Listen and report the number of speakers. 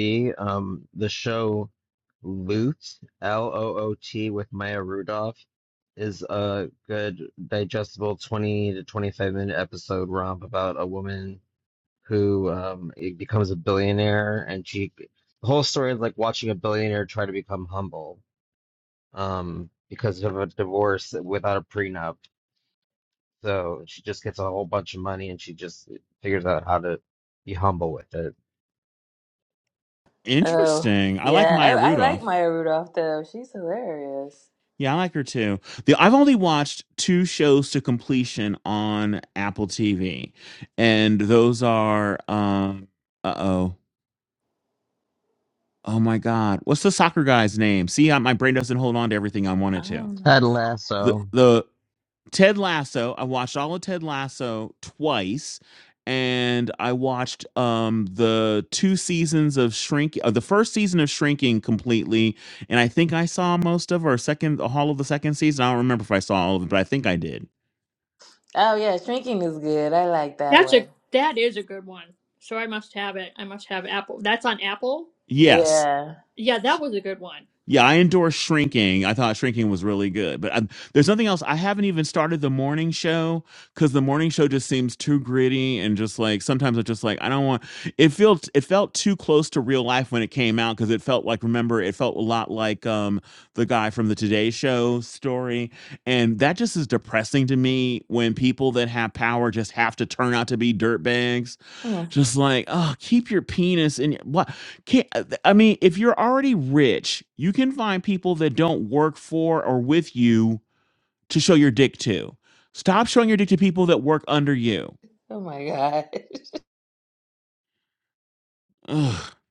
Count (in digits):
4